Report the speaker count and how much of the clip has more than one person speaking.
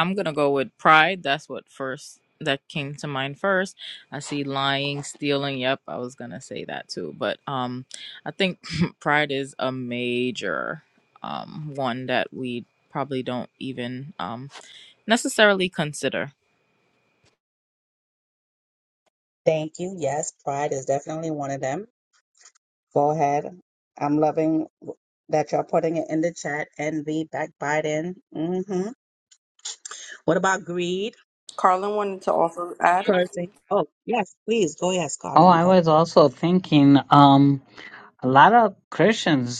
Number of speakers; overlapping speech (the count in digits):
4, about 1%